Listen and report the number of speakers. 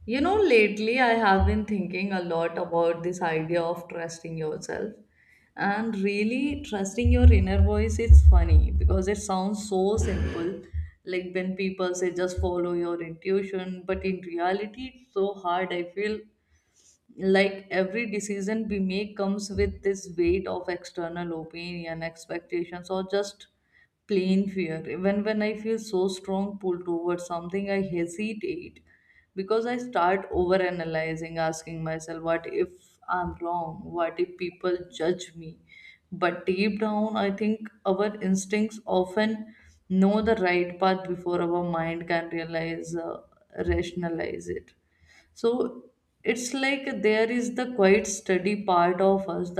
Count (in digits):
1